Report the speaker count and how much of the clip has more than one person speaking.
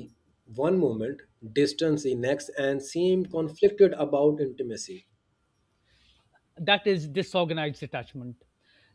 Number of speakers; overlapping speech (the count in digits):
2, no overlap